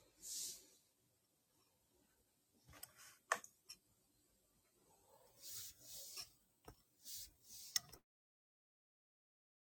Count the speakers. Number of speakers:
zero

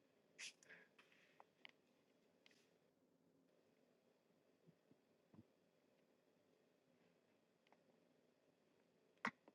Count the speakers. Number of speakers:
zero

